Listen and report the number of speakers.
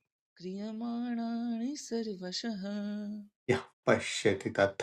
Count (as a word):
two